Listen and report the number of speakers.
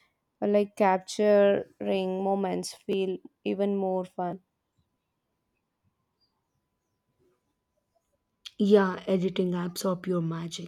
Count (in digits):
2